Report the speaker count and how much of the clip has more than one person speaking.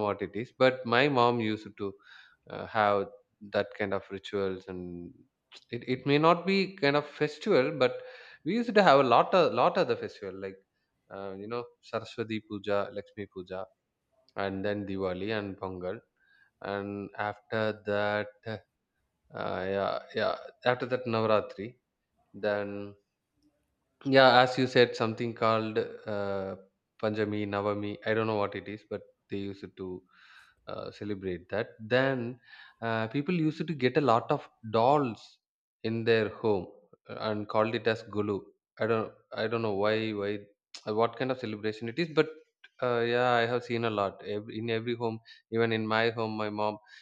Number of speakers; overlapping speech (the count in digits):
1, no overlap